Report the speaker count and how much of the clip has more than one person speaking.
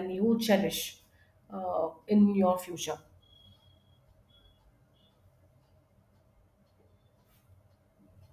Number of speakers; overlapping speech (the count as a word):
one, no overlap